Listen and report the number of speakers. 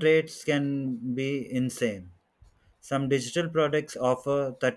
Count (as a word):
one